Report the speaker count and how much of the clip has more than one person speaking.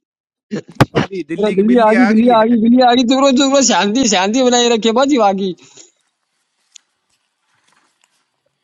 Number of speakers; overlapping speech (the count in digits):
2, about 13%